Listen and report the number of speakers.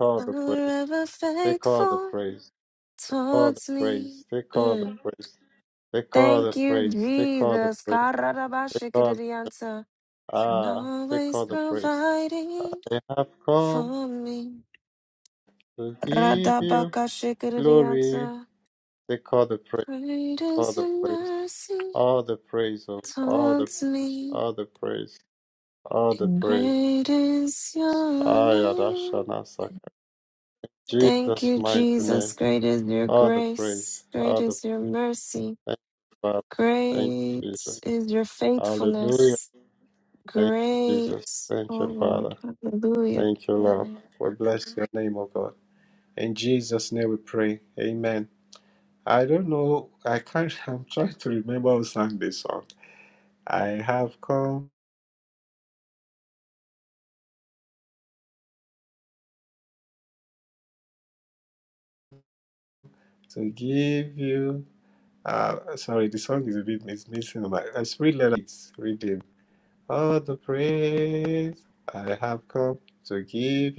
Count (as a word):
two